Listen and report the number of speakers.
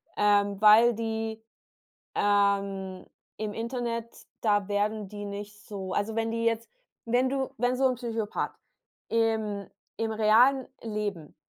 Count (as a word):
one